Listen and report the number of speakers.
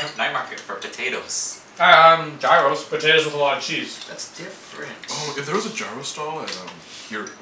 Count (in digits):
4